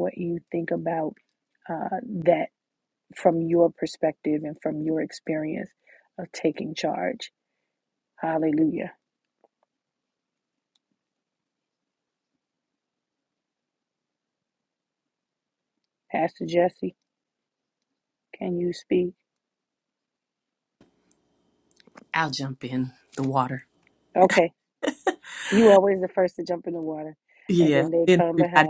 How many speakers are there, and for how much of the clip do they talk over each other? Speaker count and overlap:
2, about 4%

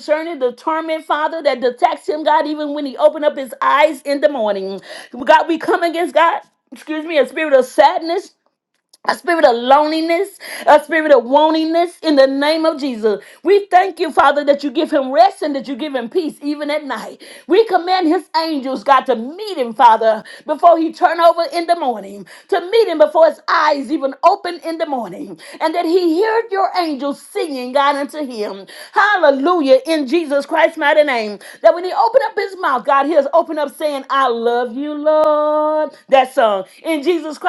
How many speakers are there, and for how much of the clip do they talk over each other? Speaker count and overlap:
1, no overlap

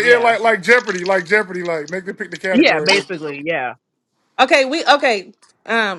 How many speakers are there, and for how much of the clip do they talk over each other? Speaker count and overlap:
3, about 13%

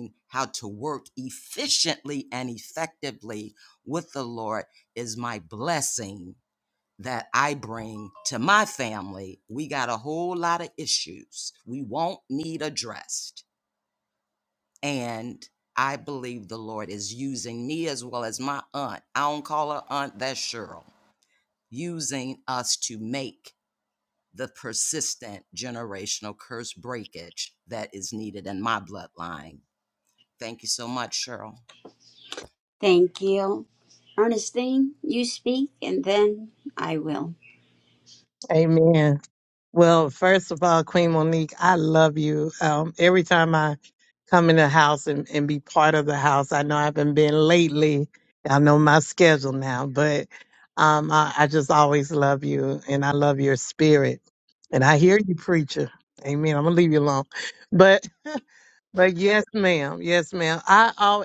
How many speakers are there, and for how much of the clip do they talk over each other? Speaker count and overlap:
3, no overlap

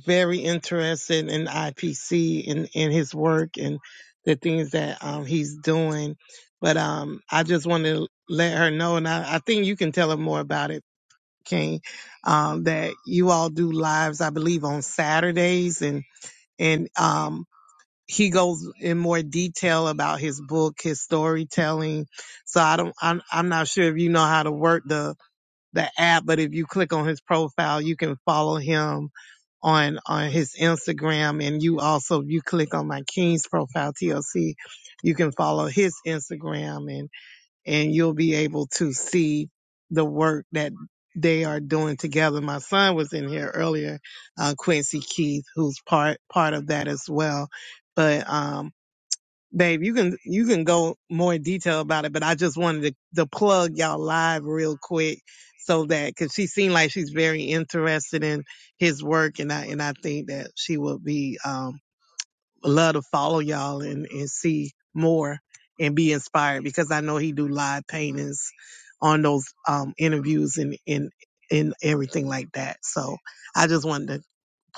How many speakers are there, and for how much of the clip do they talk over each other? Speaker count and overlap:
1, no overlap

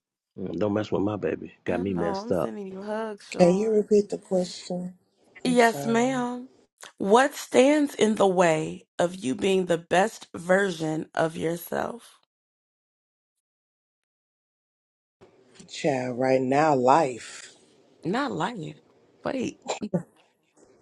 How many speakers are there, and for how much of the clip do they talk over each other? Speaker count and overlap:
3, about 9%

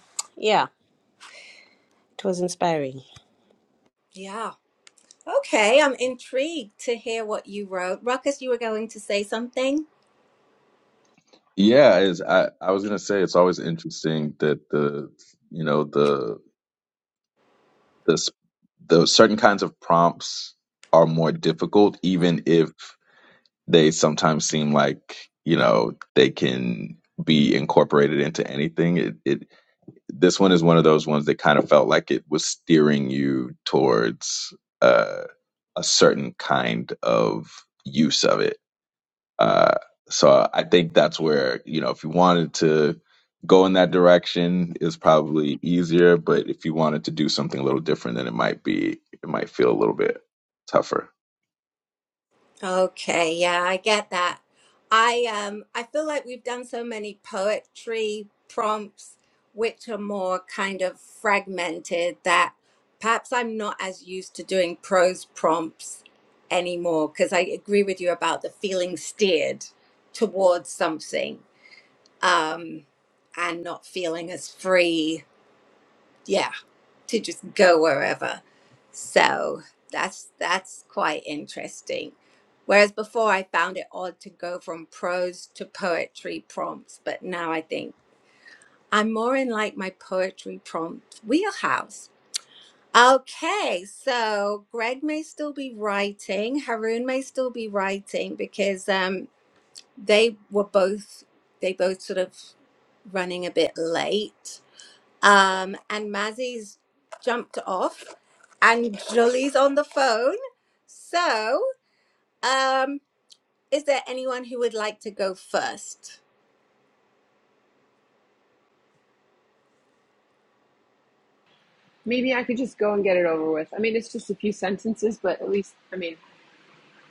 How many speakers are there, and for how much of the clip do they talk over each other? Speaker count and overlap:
4, no overlap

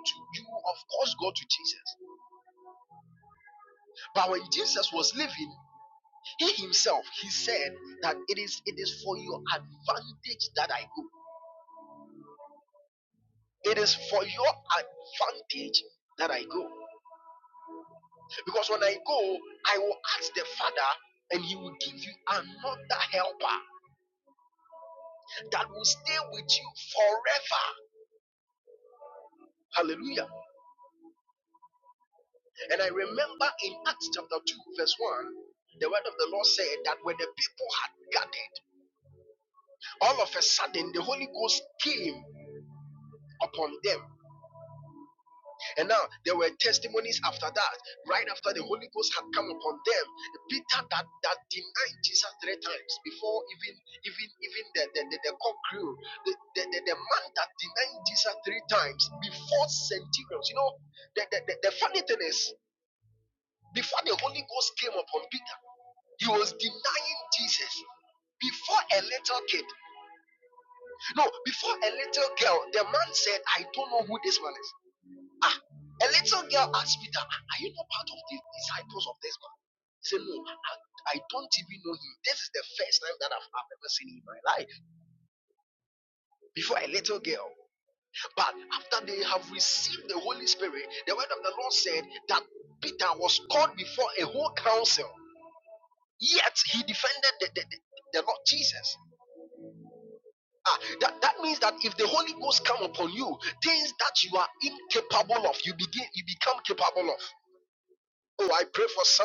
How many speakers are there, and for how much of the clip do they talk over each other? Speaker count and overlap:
1, no overlap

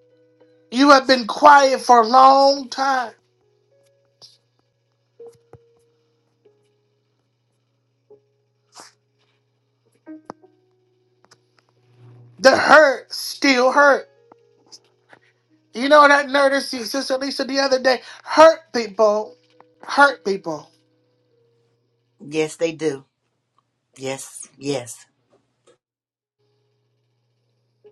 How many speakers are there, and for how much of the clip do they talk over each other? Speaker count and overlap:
2, no overlap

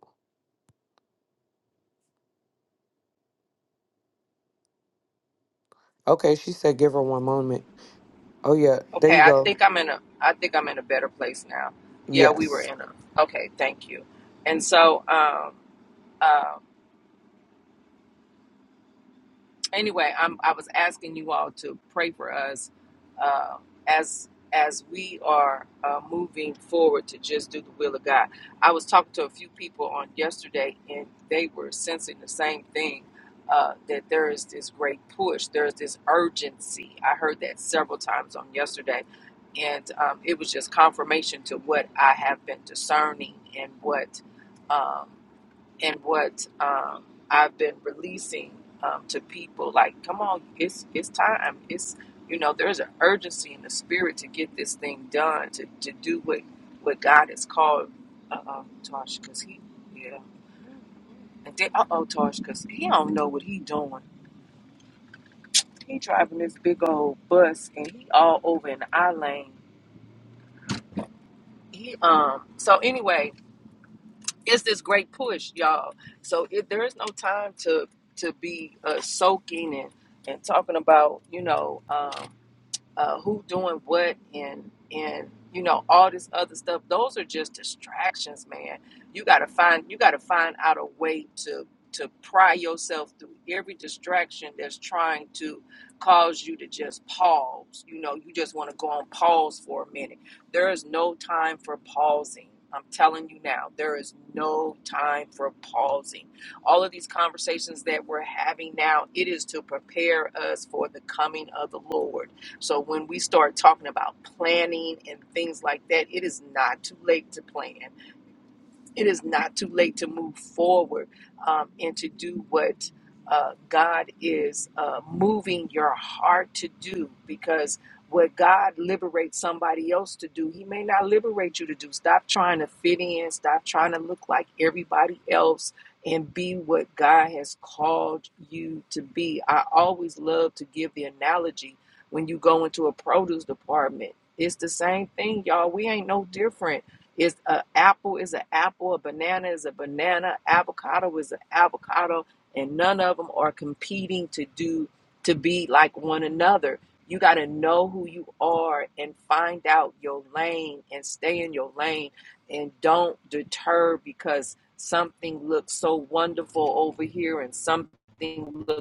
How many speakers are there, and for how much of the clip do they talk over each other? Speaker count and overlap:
2, under 1%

